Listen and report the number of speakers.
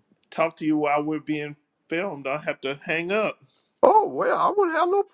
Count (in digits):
2